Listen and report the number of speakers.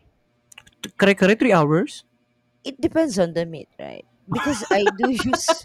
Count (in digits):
2